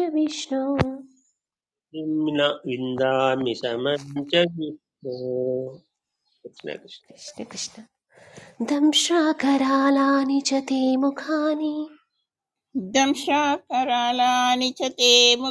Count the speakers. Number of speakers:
3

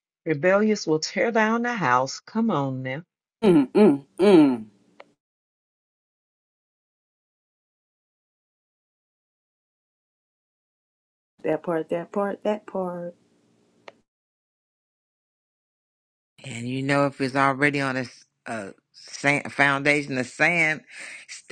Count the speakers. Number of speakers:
3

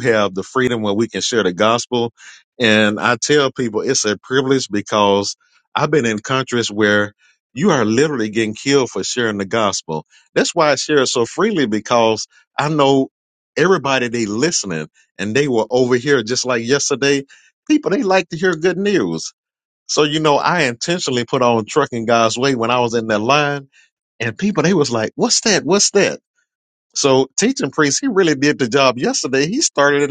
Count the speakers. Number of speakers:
1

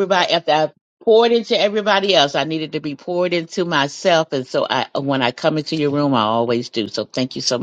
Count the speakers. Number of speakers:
1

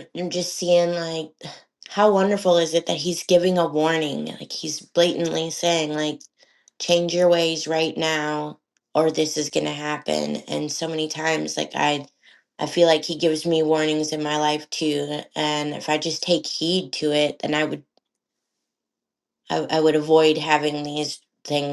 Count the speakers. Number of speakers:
1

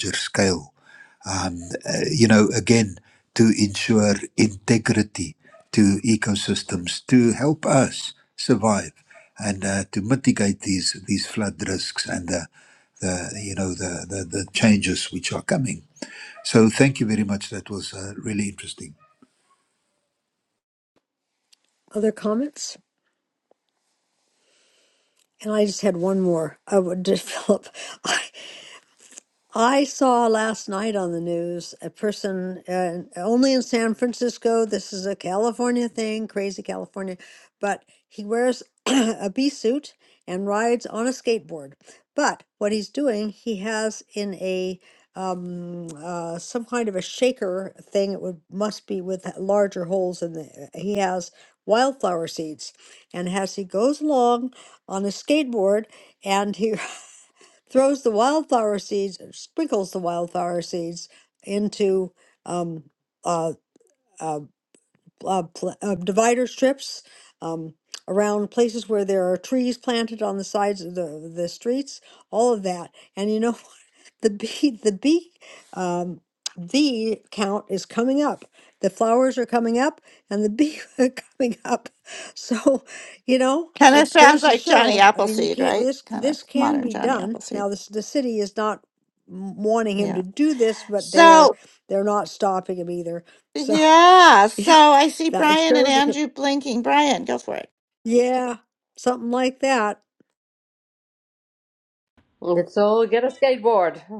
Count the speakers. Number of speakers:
4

